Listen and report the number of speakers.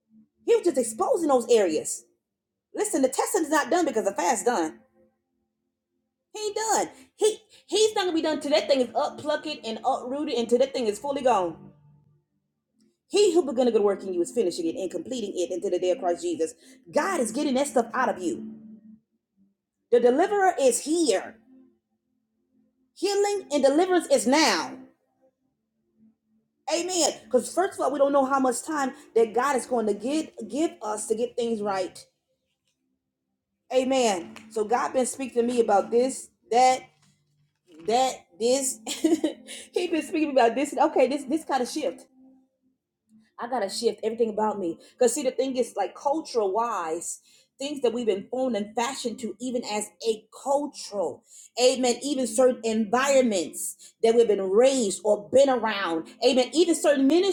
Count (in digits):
1